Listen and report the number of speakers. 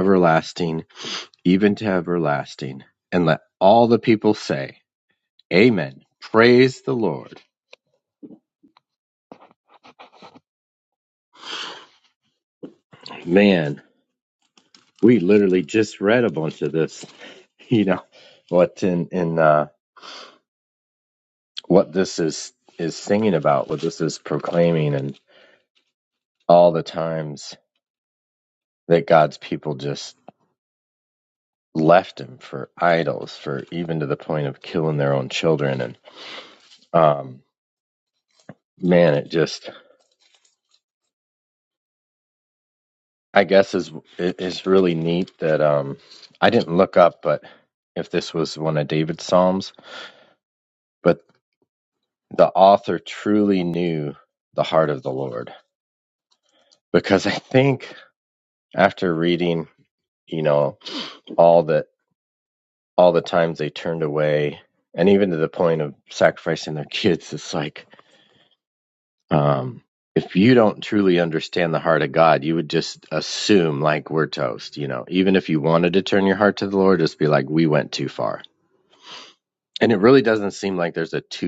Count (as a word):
one